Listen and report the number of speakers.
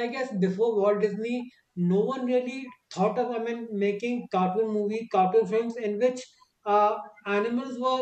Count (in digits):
1